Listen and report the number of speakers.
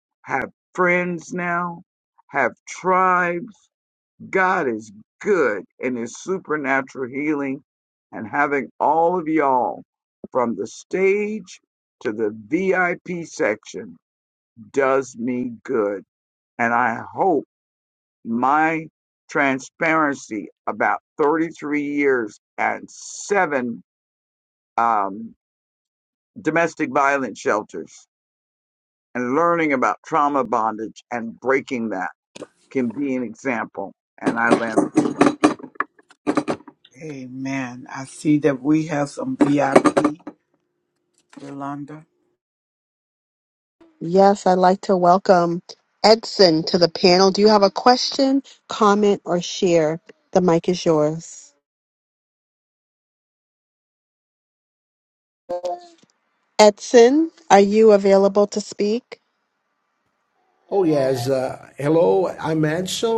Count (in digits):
4